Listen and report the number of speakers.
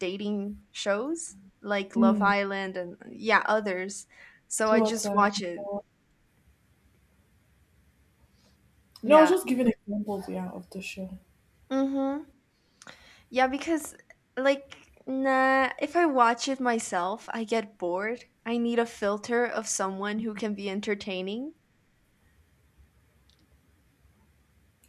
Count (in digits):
2